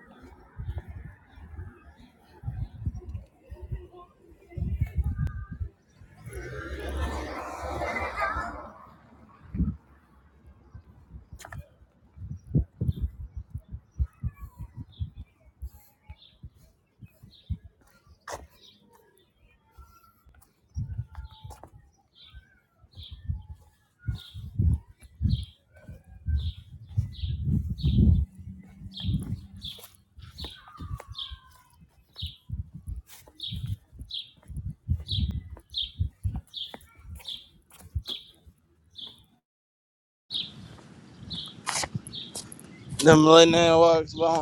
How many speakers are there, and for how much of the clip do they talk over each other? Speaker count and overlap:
1, no overlap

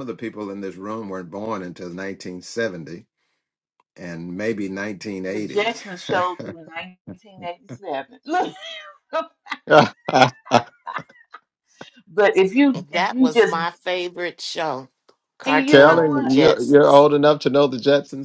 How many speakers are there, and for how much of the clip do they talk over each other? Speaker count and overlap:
3, about 13%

